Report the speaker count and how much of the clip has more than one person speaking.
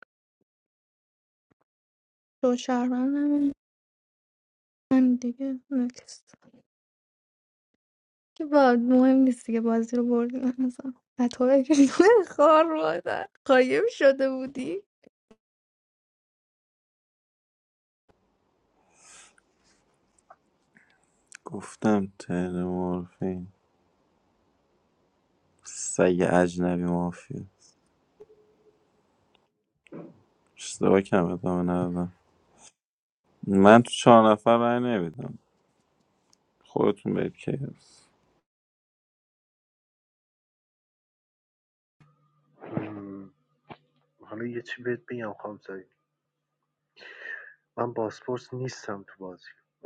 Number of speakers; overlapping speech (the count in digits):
3, no overlap